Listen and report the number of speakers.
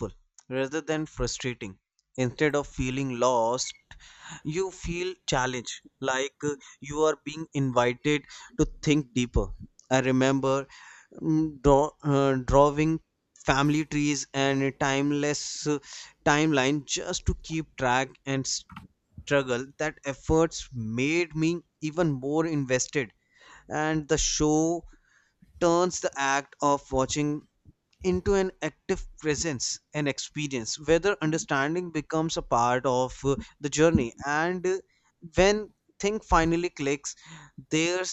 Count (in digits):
1